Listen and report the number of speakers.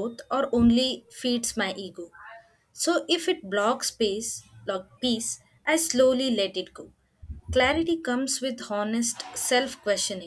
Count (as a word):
one